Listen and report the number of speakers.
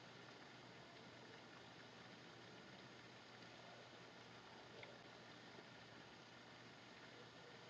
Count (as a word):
zero